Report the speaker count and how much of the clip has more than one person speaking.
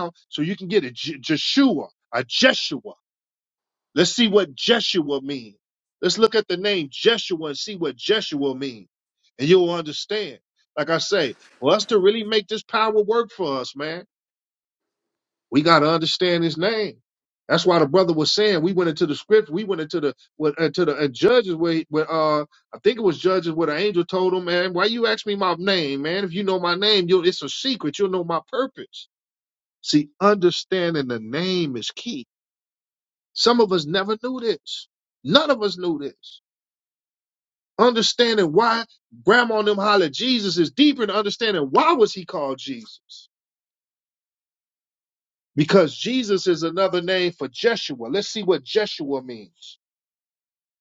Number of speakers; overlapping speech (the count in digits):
1, no overlap